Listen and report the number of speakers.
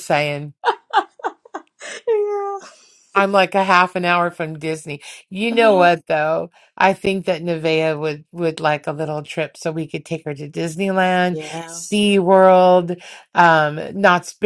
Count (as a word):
two